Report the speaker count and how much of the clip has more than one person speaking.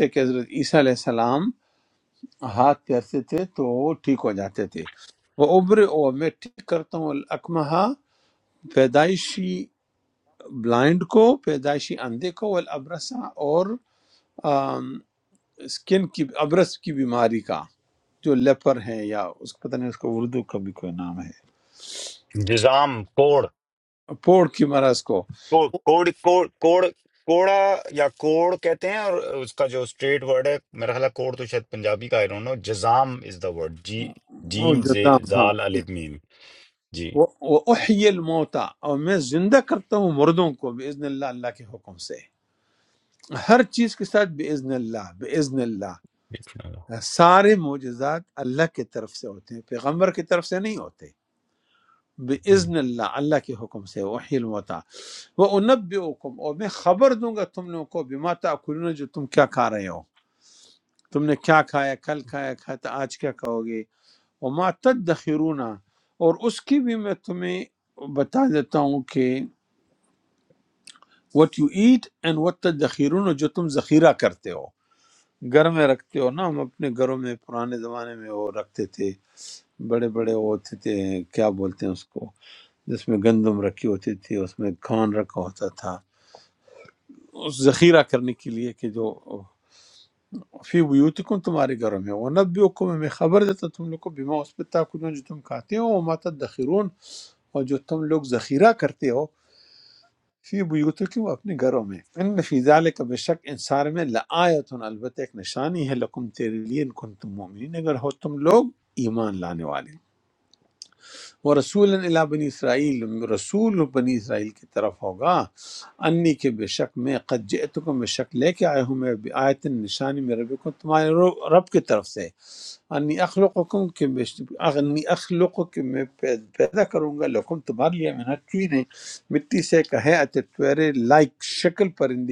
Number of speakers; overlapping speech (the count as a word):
two, about 1%